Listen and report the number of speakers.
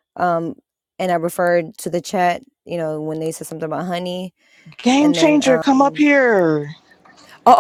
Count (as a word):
two